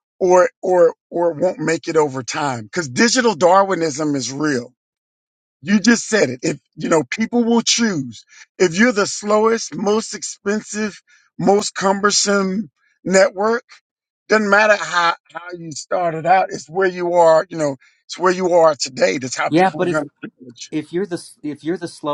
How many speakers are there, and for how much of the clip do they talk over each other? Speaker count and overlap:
2, about 2%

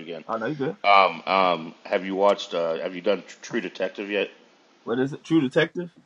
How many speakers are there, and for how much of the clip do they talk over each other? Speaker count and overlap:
2, no overlap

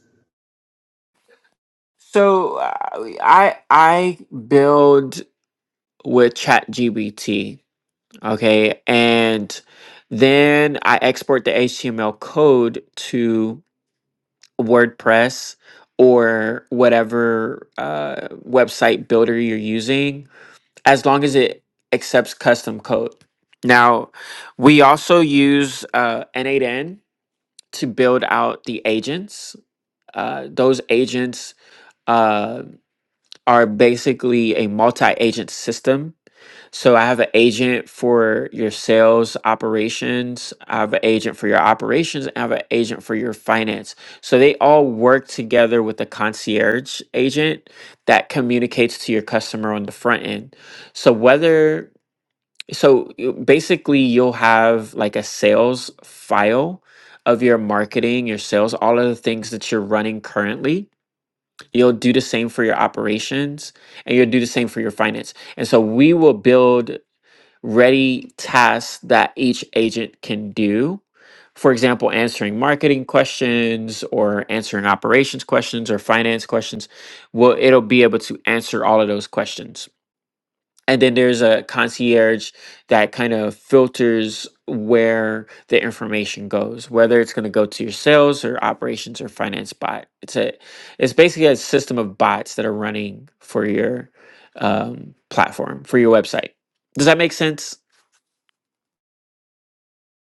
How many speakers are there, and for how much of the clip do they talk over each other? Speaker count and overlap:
1, no overlap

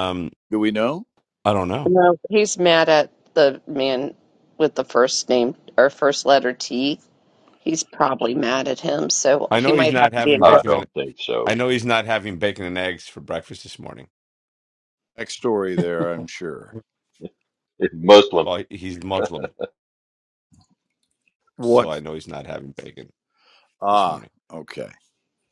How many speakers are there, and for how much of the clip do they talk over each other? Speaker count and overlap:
4, about 7%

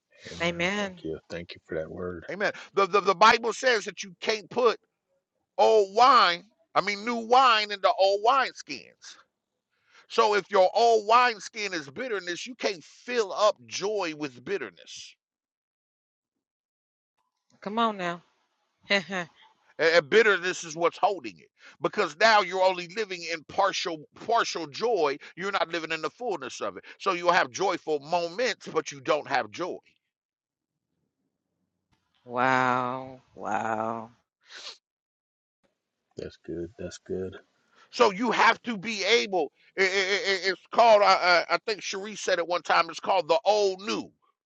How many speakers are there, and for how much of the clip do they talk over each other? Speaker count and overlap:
3, about 1%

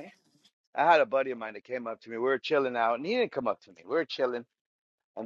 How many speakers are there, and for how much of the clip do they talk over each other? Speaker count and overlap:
1, no overlap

